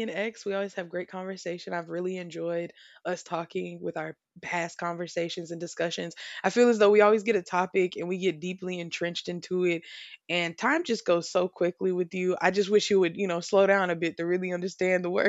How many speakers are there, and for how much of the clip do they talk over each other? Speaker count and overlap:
one, no overlap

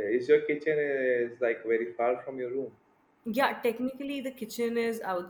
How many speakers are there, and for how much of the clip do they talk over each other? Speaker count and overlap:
two, no overlap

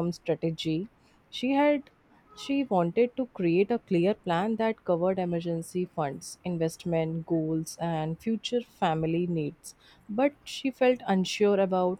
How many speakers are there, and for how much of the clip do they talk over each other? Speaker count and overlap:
one, no overlap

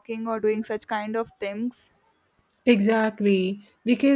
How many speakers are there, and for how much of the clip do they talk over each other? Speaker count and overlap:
two, no overlap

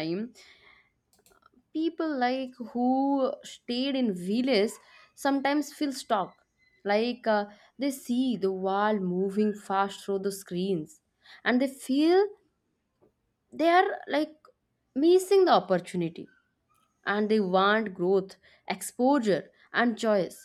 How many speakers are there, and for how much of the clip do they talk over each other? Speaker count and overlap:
one, no overlap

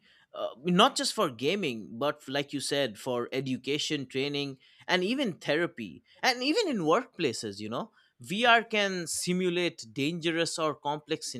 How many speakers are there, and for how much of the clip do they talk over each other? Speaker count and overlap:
one, no overlap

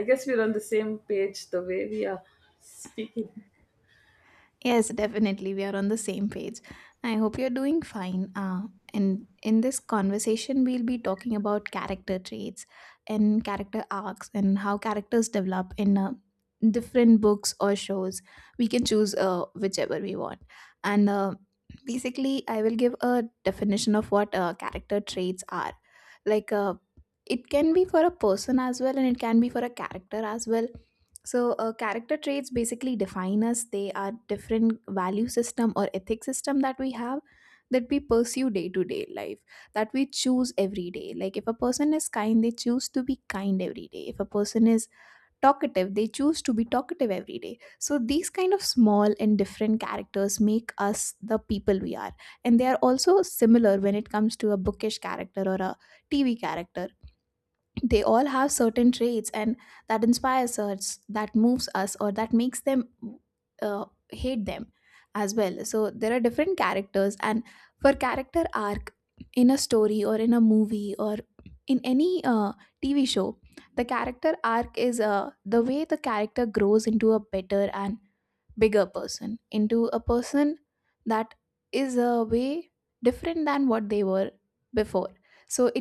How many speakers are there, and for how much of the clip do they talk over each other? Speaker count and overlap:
two, no overlap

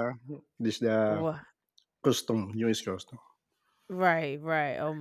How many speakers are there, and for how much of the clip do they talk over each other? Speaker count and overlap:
two, about 2%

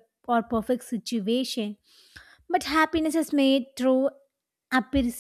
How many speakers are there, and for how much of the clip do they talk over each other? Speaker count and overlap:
one, no overlap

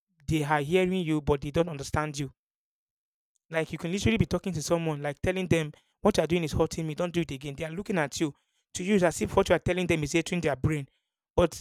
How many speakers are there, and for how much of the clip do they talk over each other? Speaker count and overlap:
one, no overlap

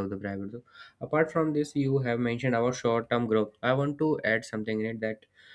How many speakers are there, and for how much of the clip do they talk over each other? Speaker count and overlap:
one, no overlap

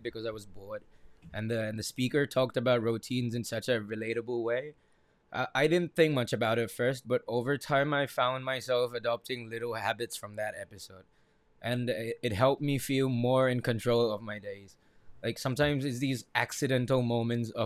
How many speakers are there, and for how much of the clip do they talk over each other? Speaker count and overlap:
one, no overlap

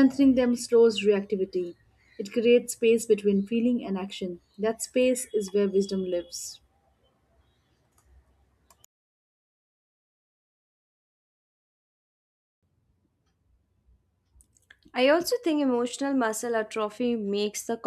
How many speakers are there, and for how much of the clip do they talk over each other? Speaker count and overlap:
two, no overlap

